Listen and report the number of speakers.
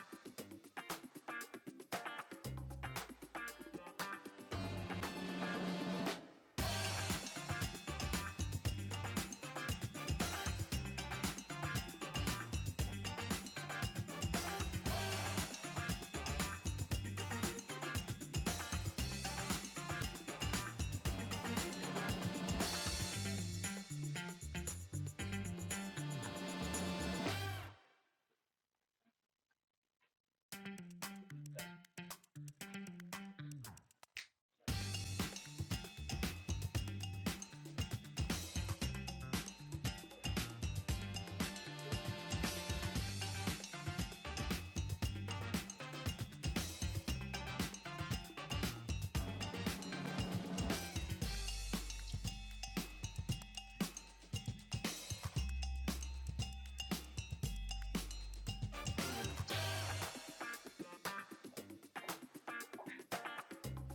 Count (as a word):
zero